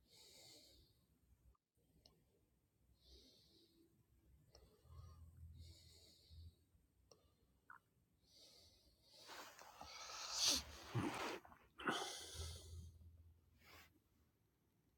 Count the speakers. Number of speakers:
zero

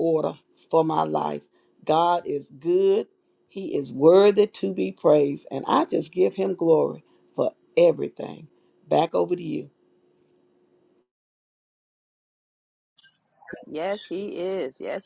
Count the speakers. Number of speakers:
two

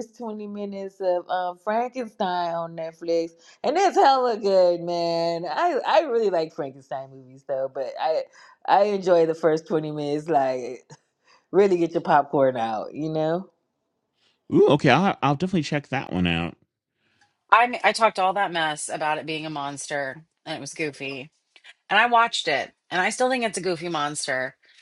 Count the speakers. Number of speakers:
three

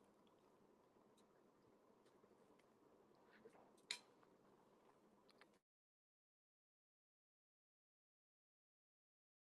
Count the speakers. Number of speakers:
zero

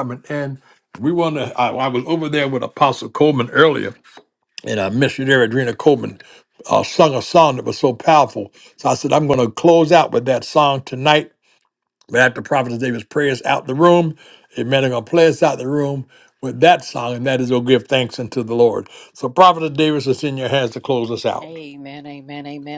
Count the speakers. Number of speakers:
two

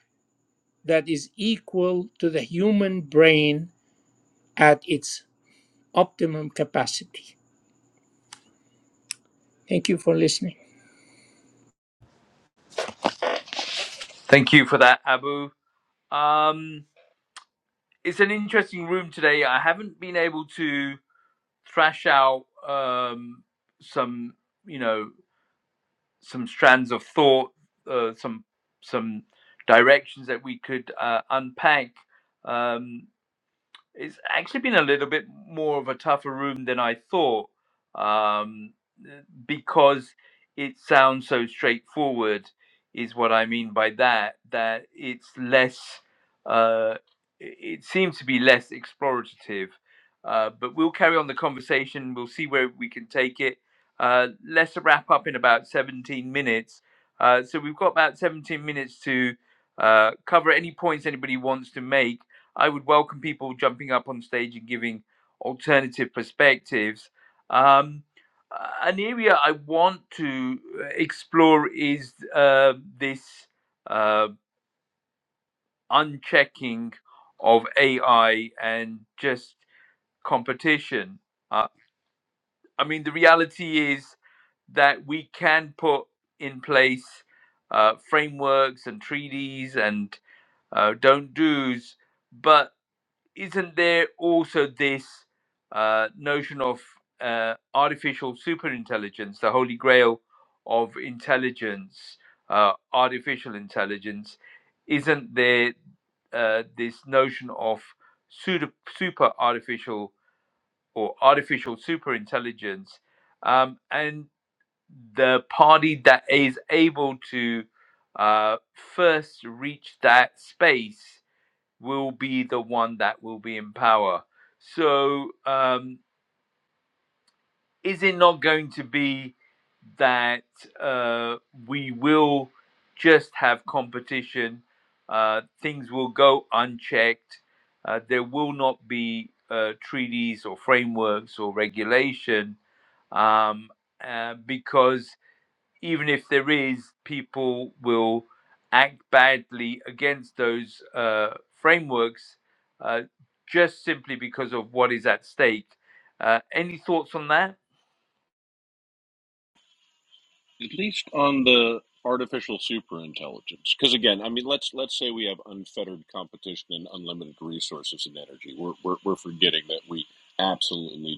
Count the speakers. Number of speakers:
three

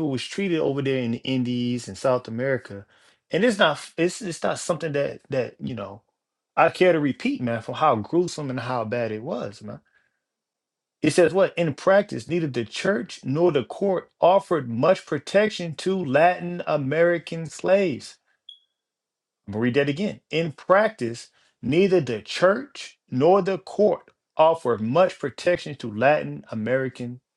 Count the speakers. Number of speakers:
one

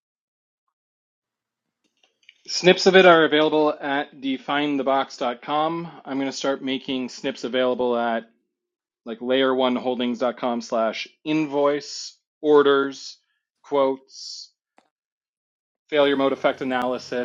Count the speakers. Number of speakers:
one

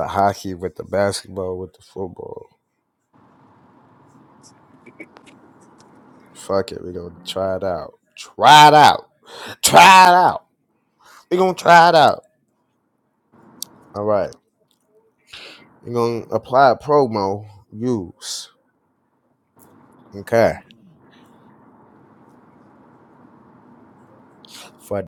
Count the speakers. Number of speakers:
one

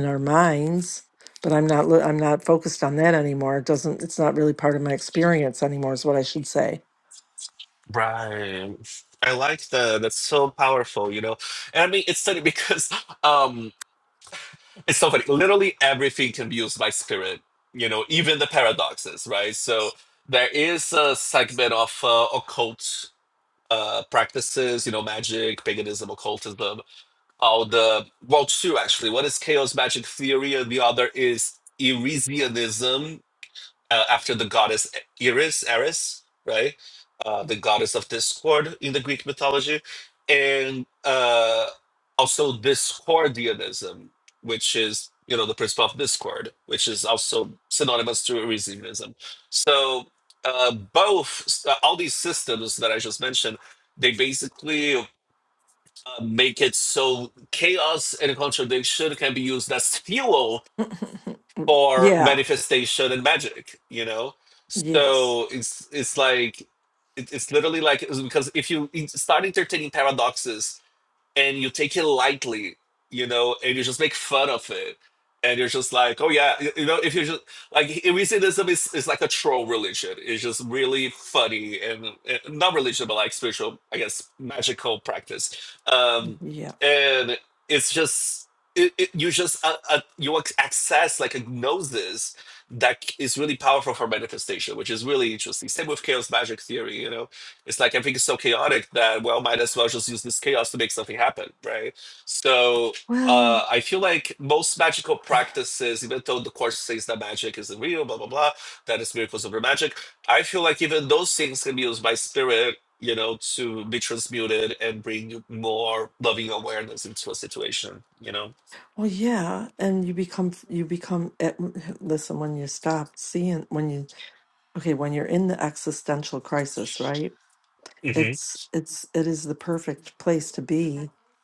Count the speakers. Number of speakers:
two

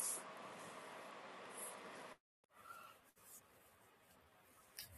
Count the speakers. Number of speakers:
zero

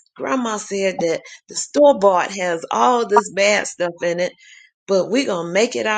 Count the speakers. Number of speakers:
one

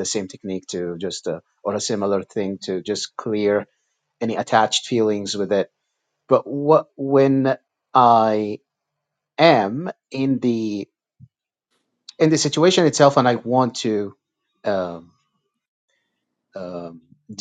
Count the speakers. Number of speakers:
one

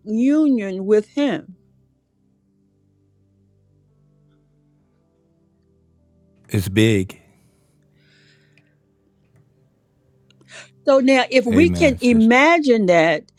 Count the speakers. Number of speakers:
two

